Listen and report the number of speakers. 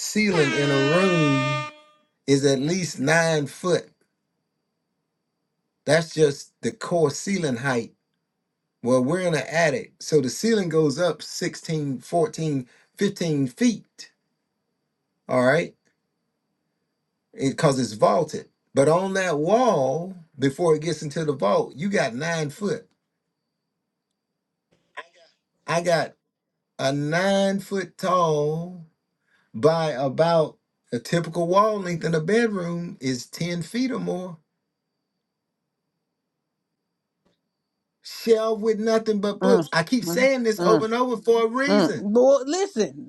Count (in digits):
2